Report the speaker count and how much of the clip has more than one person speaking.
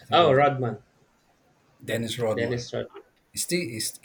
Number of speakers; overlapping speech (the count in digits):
2, about 15%